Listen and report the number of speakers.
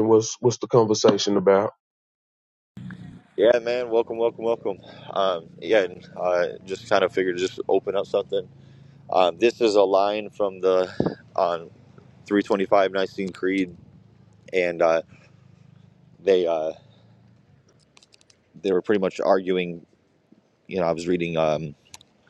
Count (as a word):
two